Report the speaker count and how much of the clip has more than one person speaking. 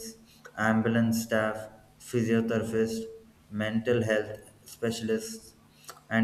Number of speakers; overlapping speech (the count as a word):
one, no overlap